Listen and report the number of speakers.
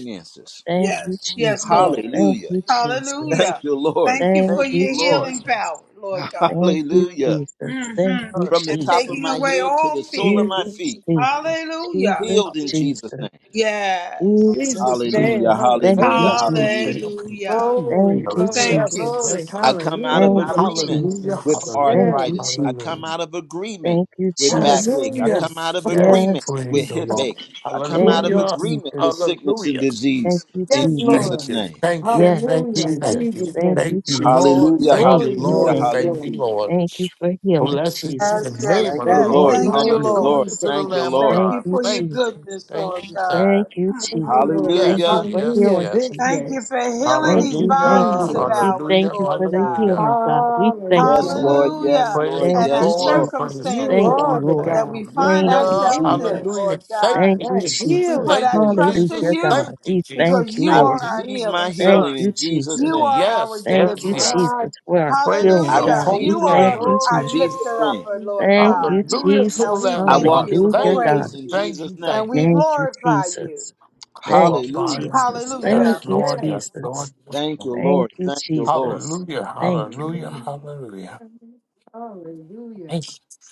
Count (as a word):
five